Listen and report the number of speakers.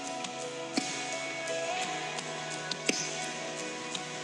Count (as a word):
zero